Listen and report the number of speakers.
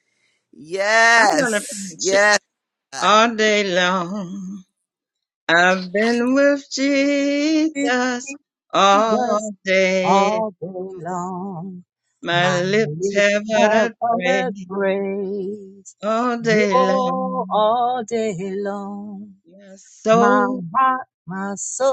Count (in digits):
3